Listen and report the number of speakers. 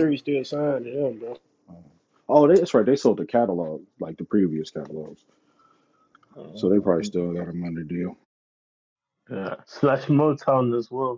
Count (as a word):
three